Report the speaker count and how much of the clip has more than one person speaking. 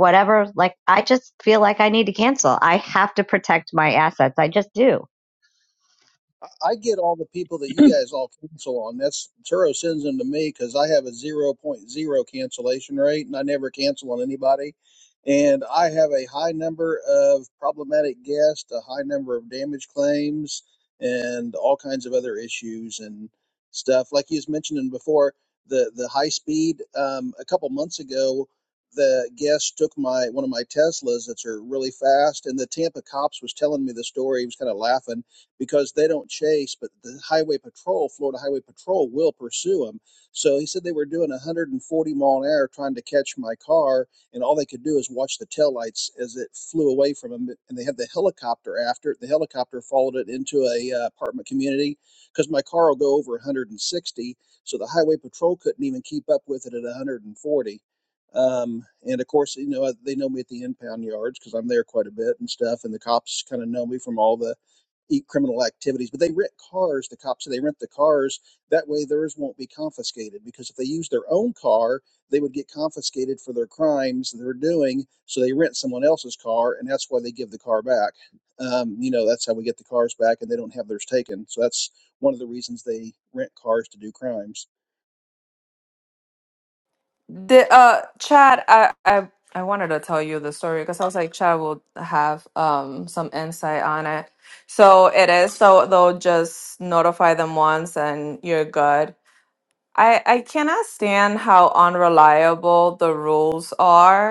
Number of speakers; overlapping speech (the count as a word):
three, no overlap